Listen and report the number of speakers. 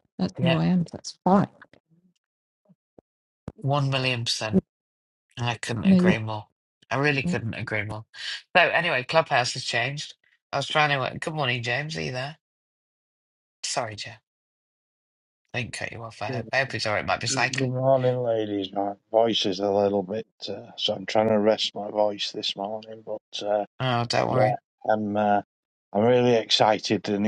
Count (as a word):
three